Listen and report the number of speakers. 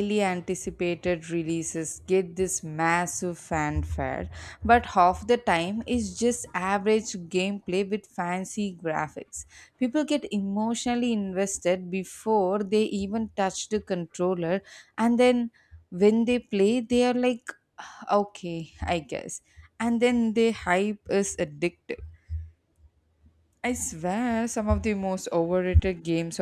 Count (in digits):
1